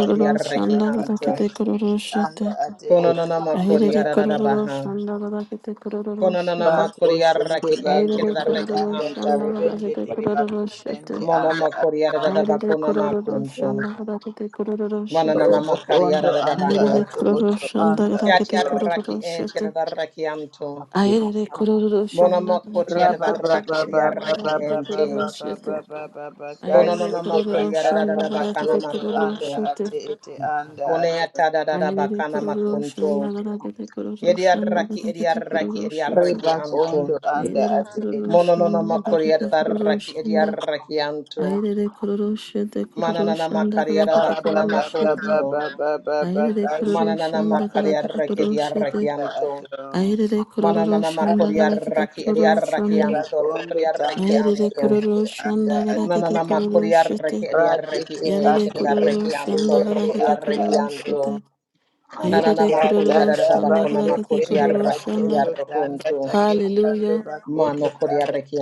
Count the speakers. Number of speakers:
three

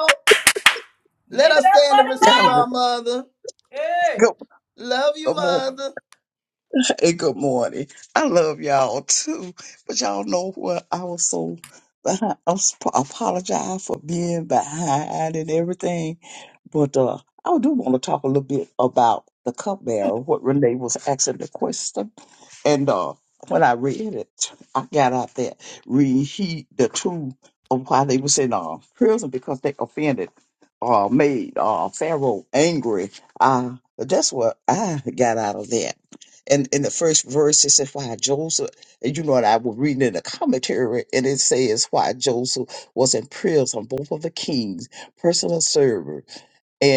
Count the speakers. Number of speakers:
three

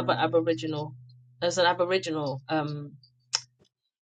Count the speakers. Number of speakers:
one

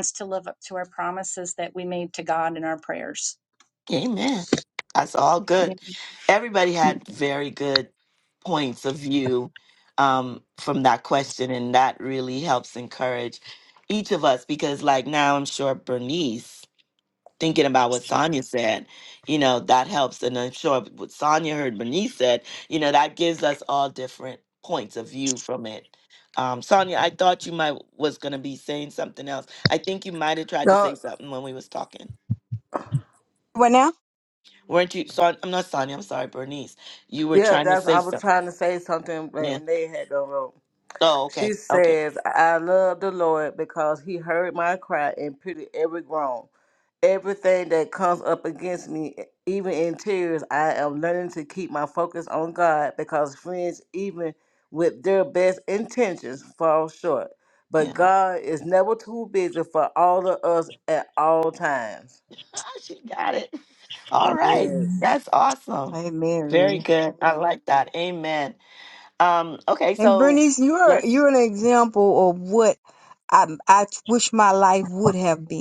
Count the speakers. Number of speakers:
four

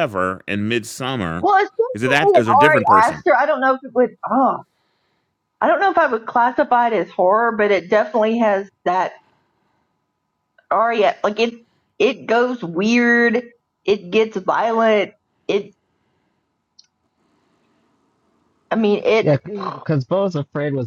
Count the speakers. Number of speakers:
three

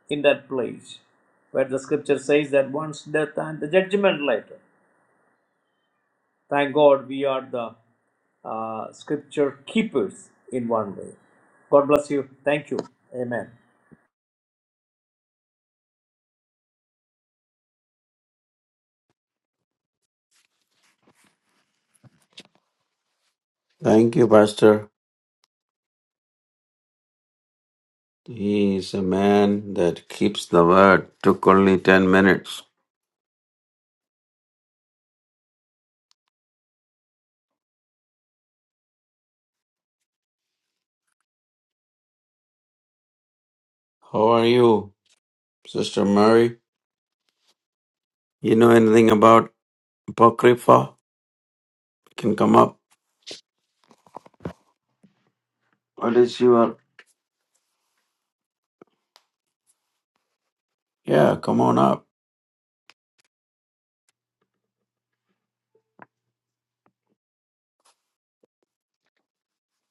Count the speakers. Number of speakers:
two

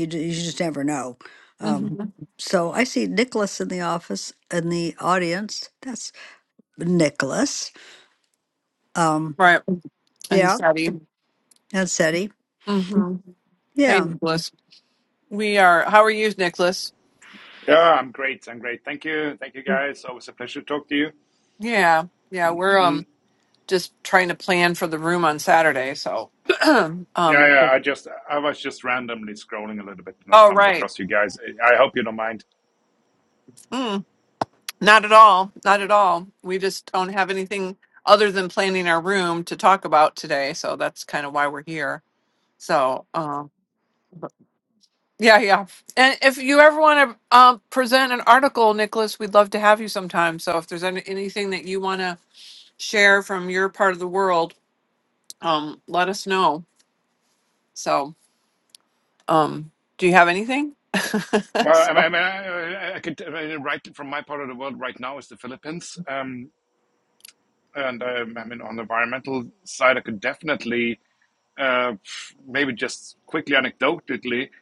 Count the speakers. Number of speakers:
three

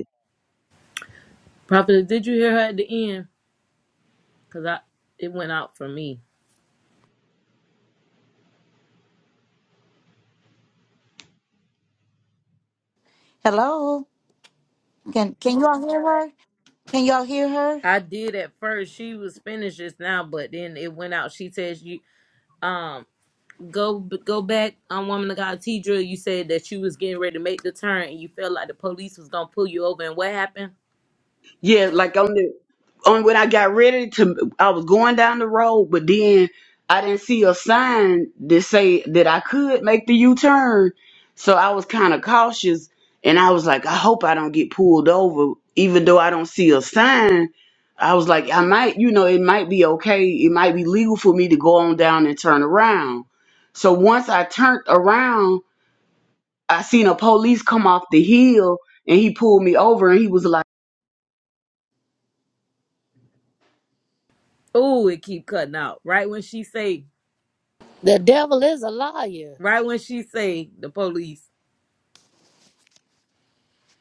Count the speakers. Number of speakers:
four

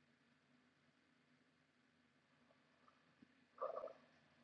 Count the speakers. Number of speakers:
zero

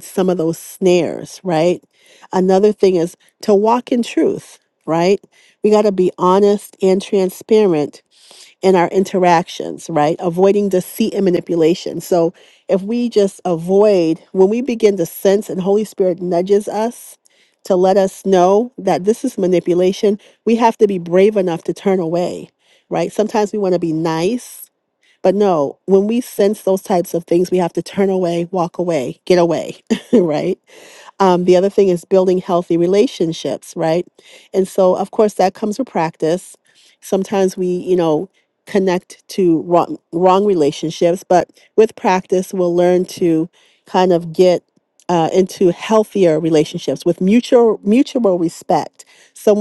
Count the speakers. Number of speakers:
one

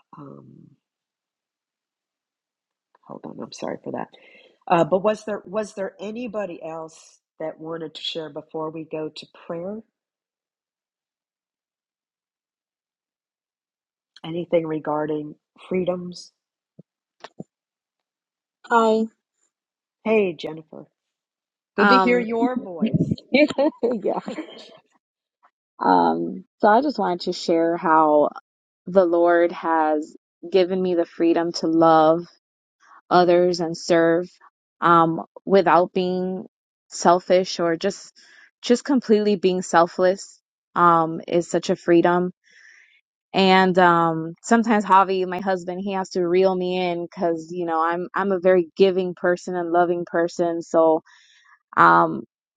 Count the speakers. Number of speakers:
two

